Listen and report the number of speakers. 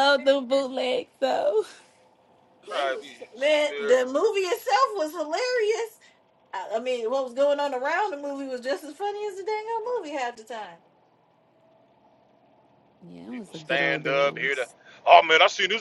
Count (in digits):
3